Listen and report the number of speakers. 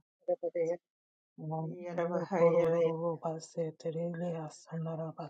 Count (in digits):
2